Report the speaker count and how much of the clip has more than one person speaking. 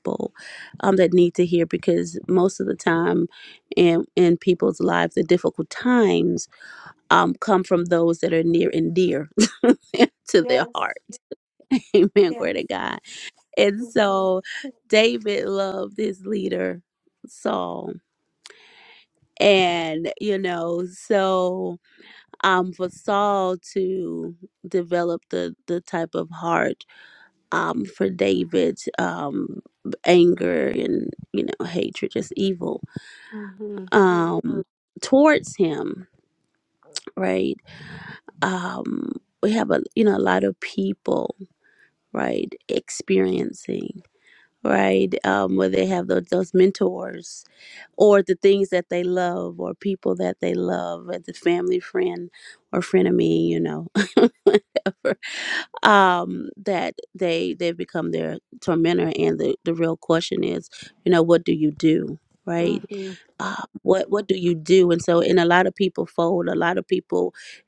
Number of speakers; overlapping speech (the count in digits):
2, about 1%